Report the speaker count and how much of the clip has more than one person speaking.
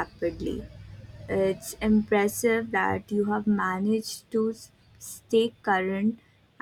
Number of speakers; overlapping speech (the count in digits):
1, no overlap